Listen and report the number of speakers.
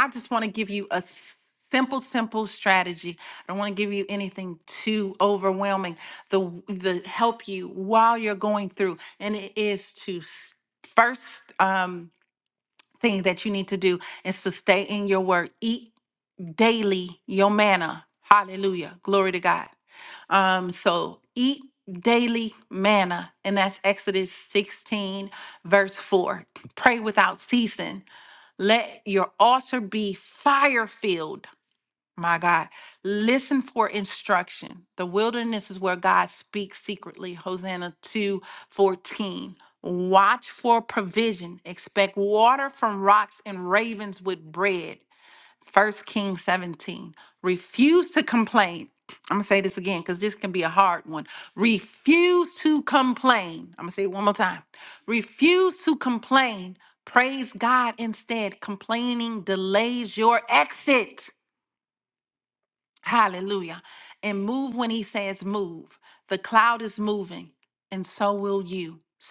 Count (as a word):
one